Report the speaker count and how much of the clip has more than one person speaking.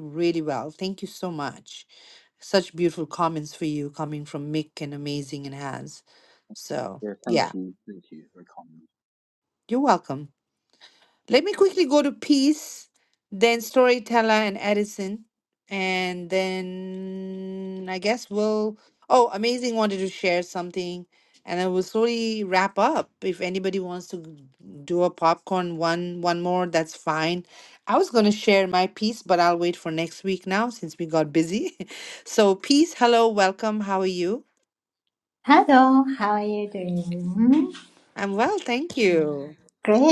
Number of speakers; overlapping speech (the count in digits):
3, about 1%